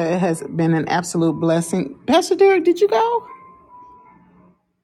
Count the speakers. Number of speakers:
1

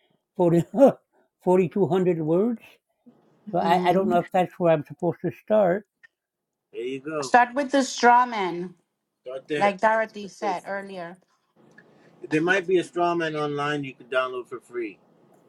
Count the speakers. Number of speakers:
3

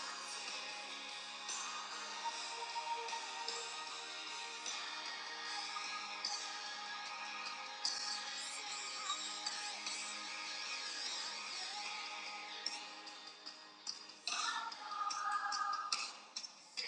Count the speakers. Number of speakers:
0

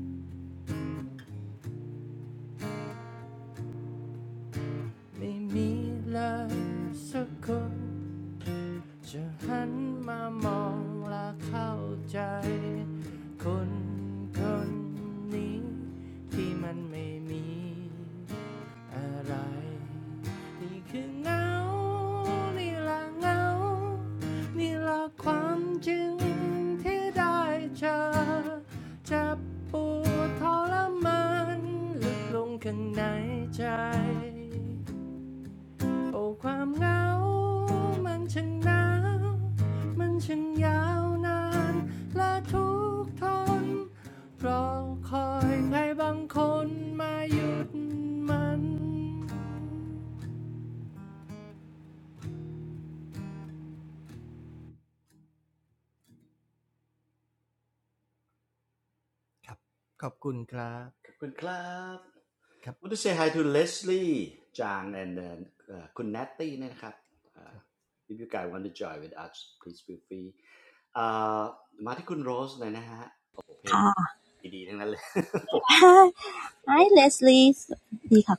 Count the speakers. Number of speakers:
3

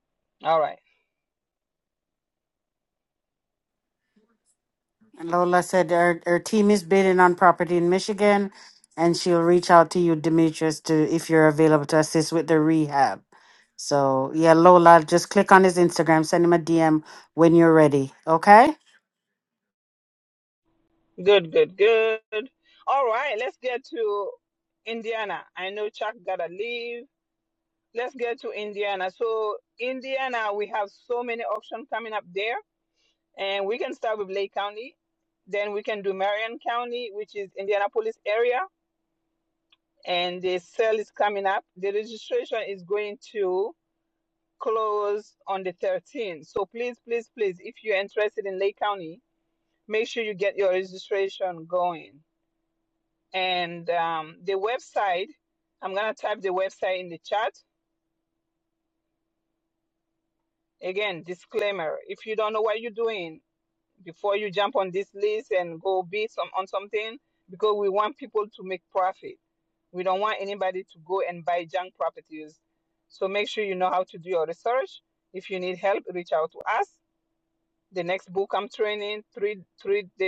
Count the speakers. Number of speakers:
2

